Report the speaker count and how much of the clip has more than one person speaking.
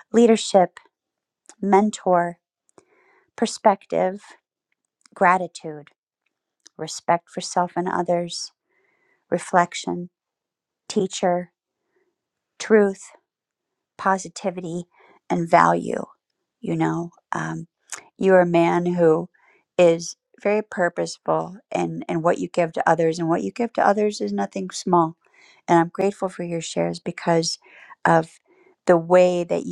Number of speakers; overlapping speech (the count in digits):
1, no overlap